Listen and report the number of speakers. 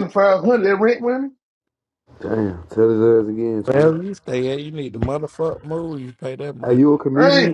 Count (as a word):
three